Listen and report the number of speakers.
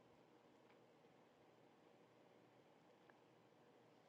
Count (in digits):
0